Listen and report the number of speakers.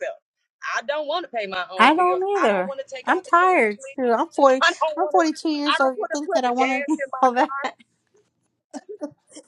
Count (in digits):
2